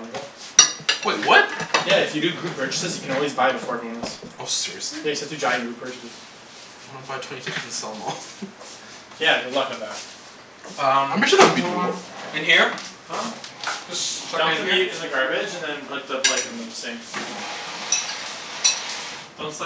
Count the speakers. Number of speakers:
3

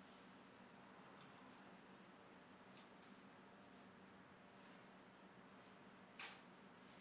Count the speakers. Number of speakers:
0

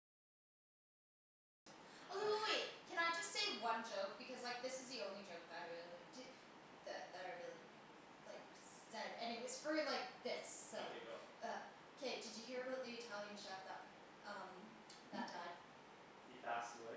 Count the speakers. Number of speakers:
2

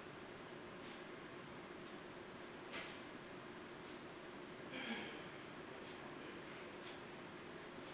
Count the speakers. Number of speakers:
0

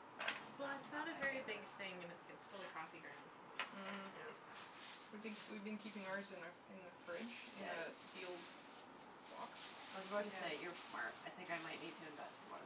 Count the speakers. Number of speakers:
3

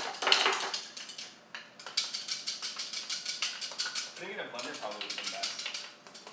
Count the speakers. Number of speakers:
1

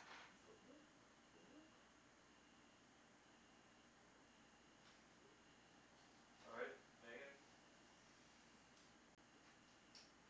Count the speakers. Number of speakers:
1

